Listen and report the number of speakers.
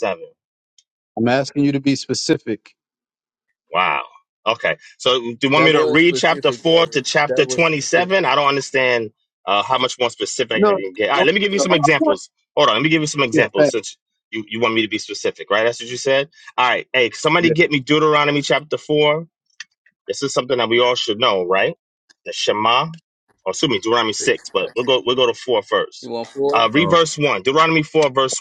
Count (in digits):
3